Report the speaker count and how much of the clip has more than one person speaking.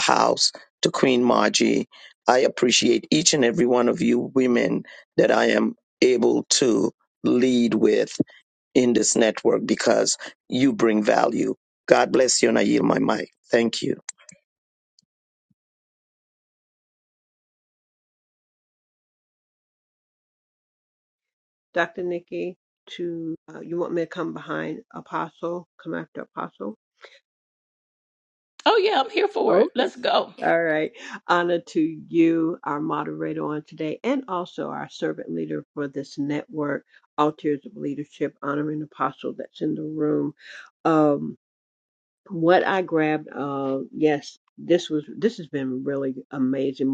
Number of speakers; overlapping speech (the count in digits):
3, about 1%